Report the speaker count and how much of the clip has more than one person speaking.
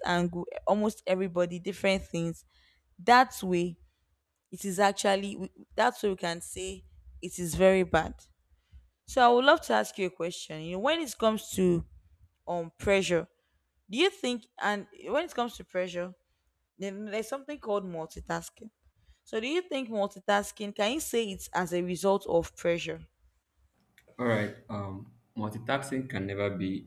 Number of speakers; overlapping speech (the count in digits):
2, no overlap